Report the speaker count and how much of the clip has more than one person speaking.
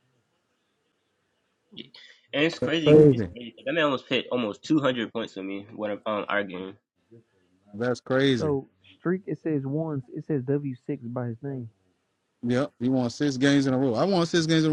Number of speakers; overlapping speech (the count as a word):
three, about 6%